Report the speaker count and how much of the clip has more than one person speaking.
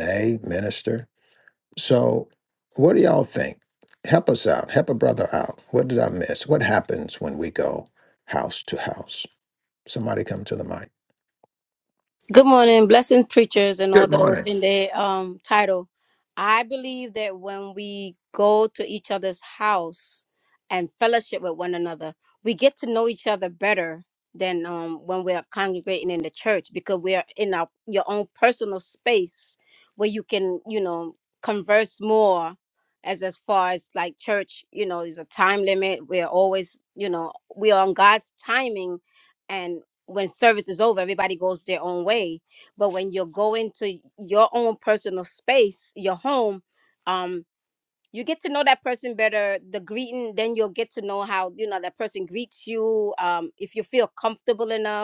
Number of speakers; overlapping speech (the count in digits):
2, about 1%